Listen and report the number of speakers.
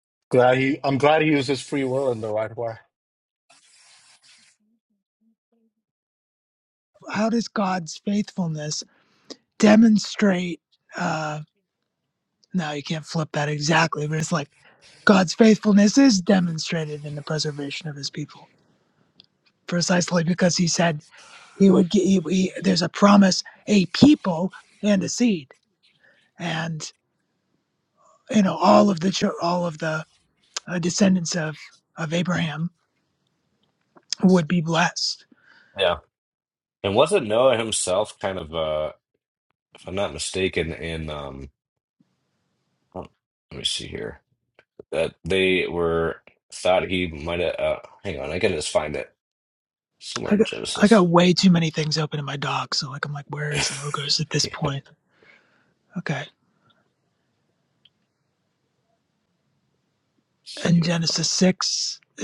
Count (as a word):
three